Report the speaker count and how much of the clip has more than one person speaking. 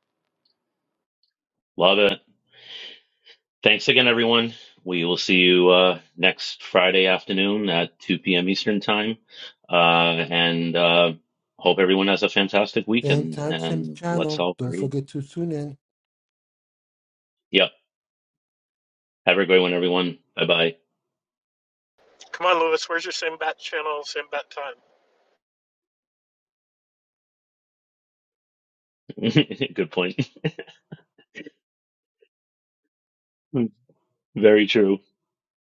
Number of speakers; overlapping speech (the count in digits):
3, about 5%